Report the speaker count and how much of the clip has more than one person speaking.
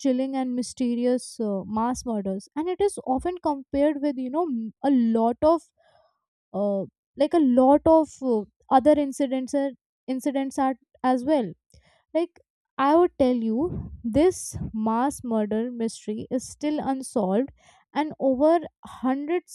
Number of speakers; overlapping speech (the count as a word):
one, no overlap